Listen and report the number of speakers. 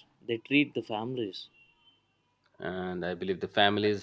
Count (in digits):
2